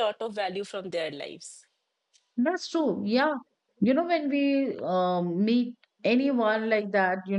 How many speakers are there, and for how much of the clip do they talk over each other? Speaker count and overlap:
2, no overlap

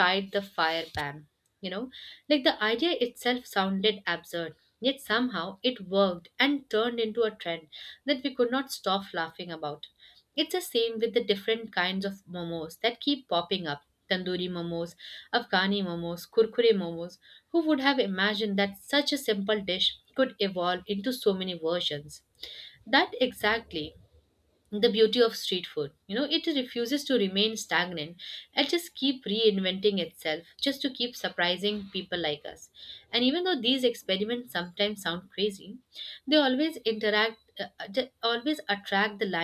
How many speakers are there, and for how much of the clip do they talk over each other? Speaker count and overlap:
1, no overlap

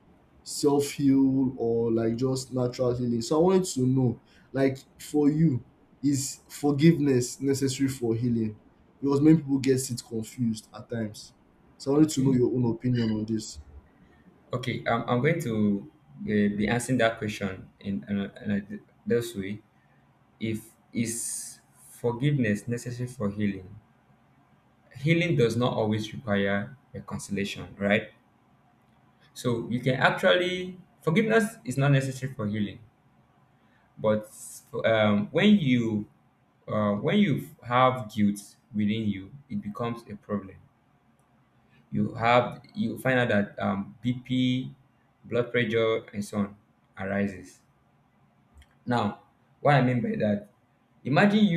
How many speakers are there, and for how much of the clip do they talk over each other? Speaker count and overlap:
2, about 1%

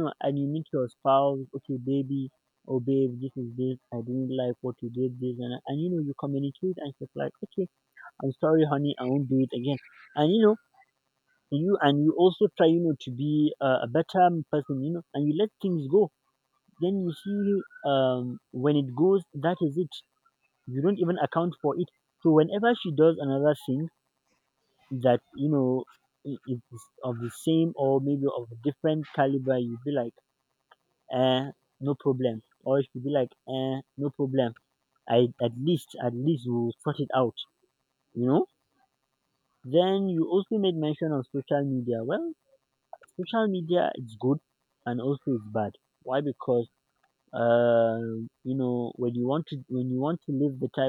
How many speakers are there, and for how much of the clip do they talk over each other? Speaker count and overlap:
1, no overlap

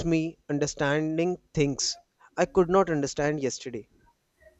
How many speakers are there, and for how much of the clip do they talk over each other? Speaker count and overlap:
1, no overlap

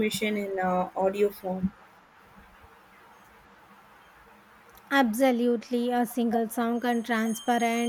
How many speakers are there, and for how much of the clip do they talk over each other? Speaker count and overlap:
2, no overlap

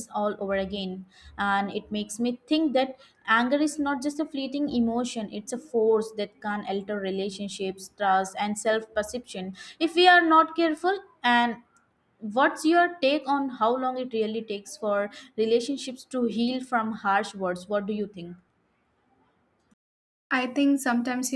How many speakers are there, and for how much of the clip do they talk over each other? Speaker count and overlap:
2, no overlap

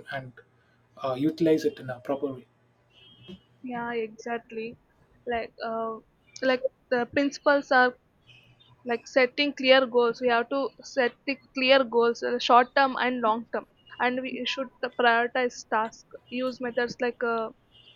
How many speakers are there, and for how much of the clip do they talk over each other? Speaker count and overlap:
2, no overlap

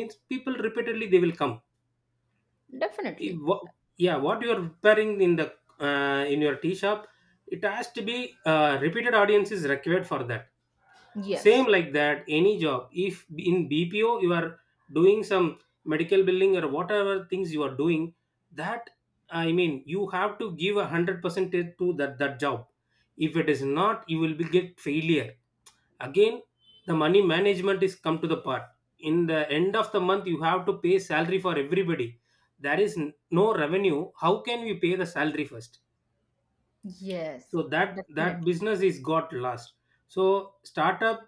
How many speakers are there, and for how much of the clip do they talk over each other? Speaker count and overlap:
2, about 2%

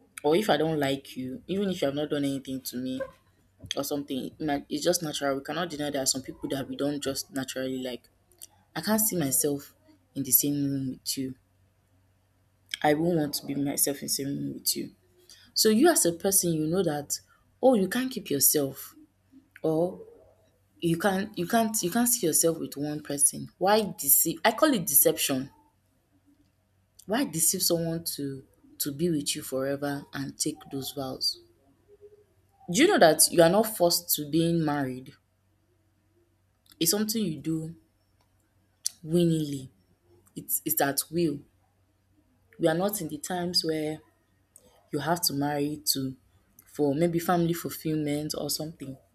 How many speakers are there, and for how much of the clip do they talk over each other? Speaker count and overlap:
1, no overlap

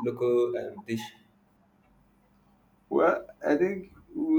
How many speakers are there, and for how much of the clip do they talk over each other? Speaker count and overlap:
2, no overlap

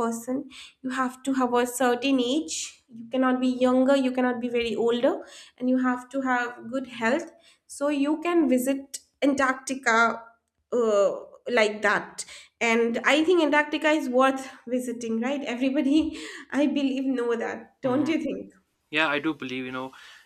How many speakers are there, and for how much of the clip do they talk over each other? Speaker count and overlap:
2, about 1%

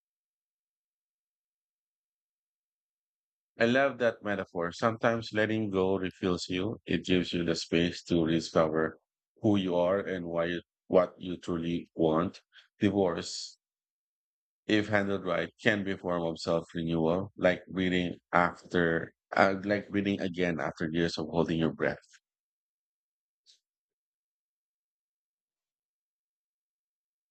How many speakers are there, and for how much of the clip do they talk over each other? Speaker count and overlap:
1, no overlap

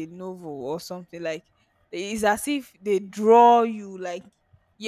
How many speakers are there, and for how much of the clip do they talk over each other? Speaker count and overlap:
1, no overlap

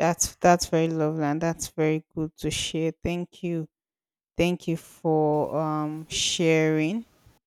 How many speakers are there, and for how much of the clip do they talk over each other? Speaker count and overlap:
1, no overlap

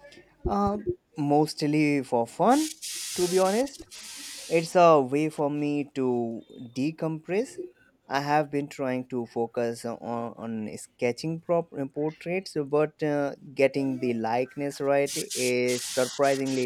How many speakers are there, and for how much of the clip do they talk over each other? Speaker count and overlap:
1, no overlap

